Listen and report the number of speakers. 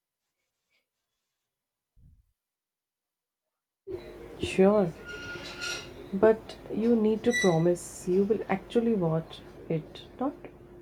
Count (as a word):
one